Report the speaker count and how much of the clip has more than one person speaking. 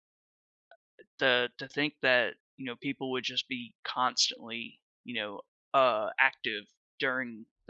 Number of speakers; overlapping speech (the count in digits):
1, no overlap